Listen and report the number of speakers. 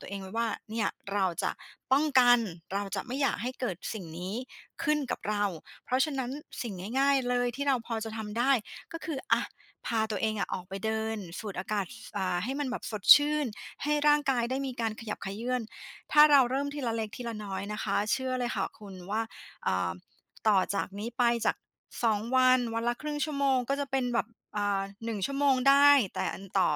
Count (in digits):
1